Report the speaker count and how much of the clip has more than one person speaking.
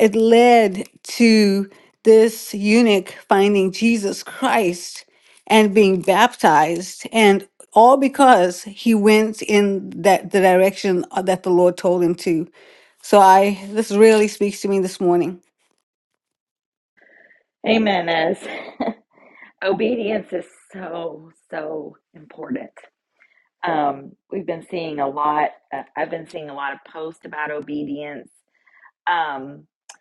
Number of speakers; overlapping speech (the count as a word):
two, no overlap